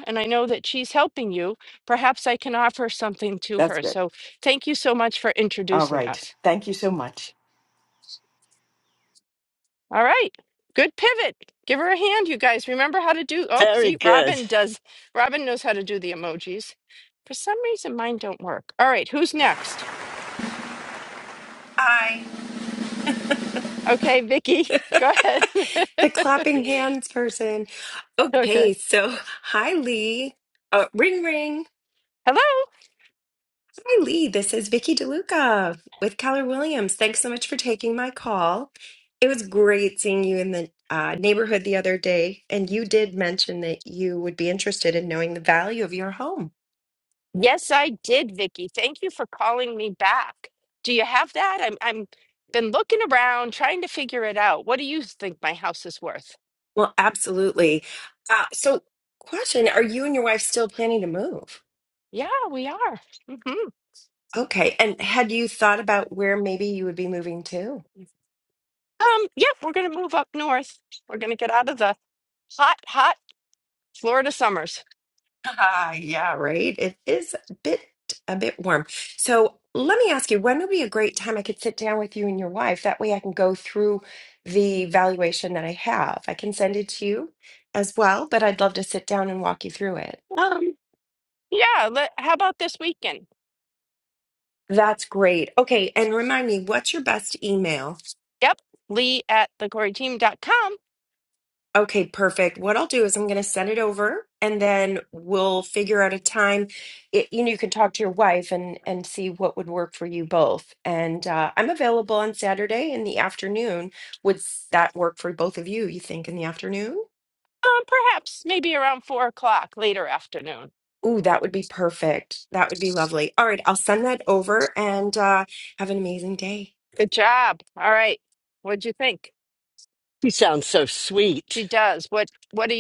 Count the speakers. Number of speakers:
four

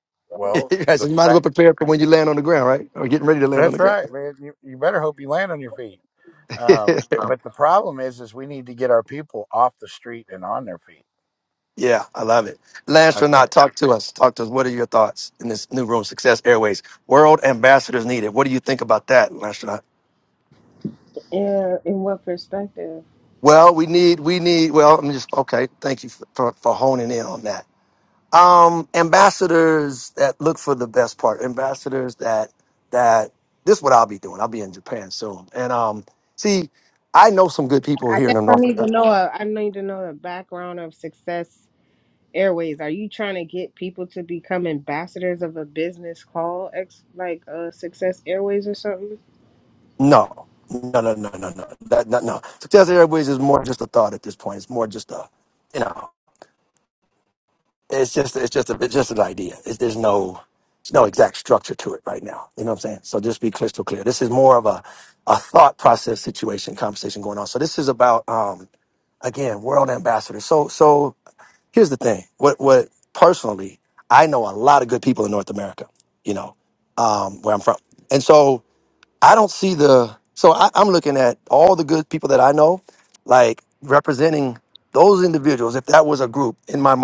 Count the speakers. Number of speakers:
three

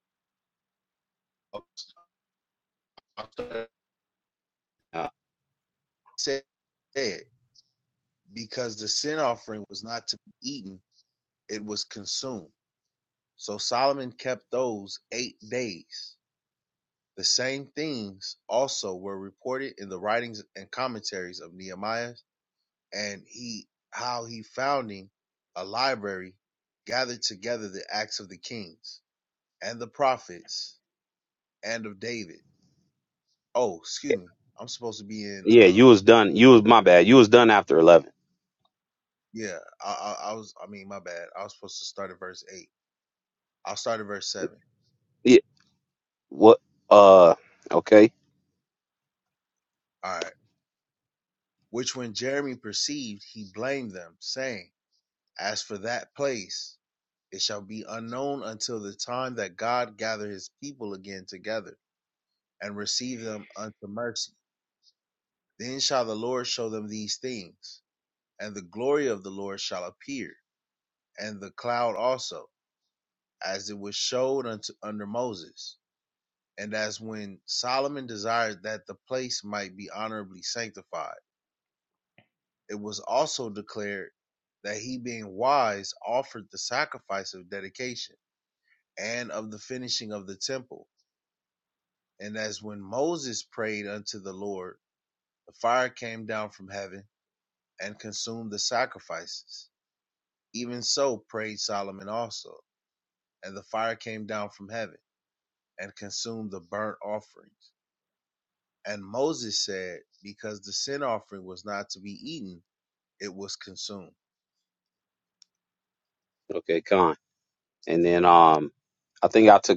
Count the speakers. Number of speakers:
two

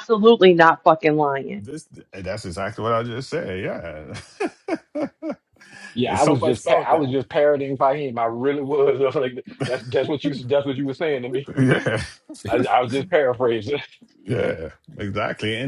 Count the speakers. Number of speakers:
three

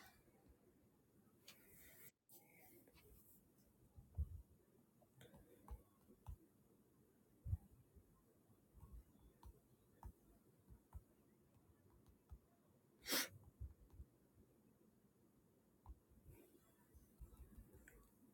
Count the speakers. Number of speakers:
zero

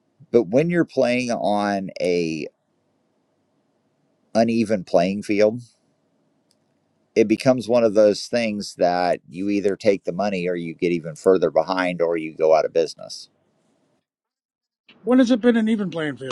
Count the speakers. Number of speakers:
two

